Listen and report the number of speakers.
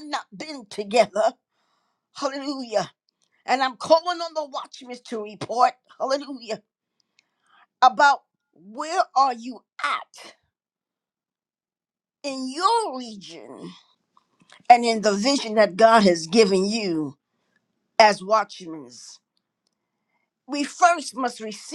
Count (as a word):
one